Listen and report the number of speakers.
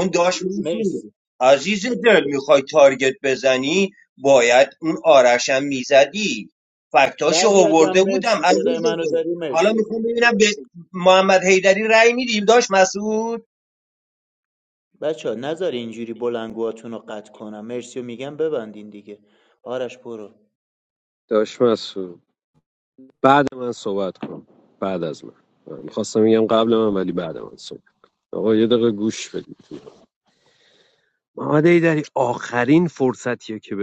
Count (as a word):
three